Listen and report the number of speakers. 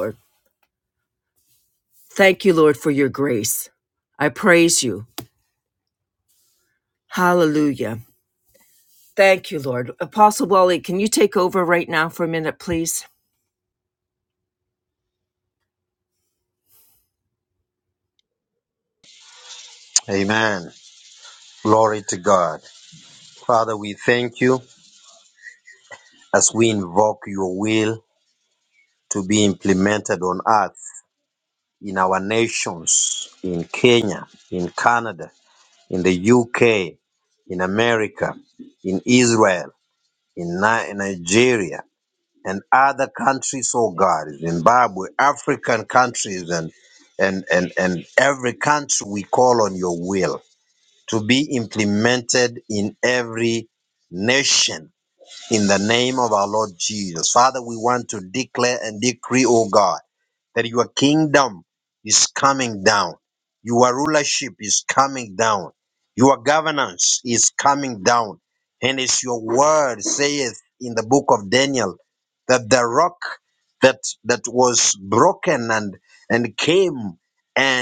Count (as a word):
two